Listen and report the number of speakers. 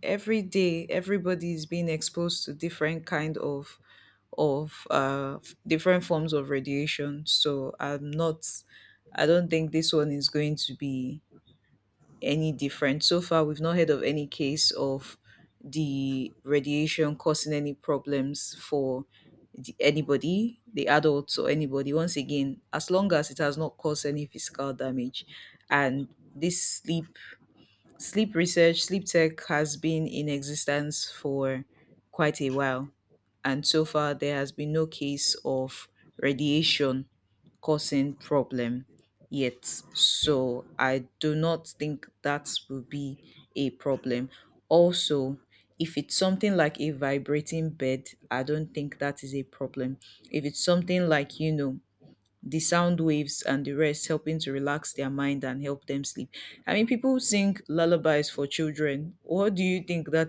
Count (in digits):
1